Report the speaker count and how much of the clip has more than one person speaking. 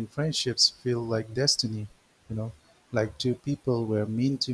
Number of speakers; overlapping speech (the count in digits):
1, no overlap